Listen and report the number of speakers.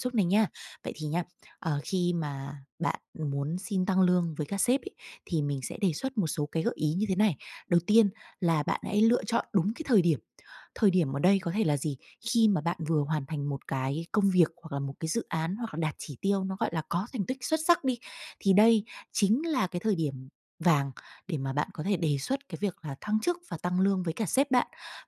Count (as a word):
one